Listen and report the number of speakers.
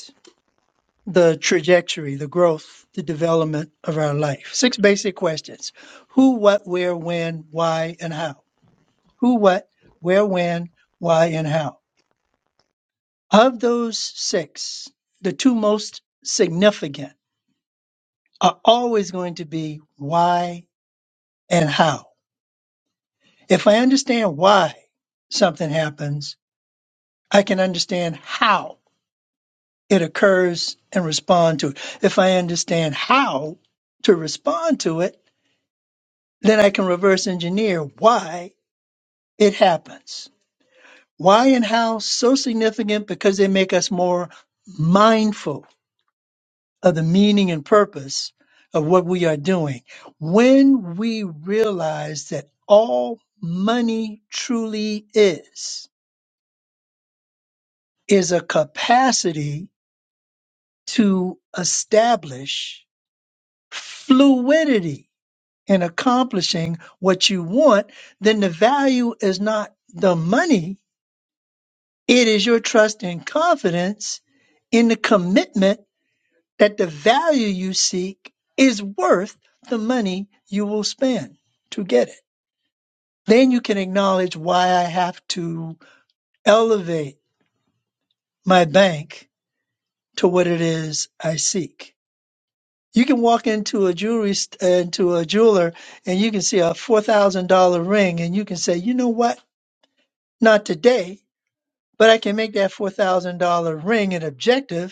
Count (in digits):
1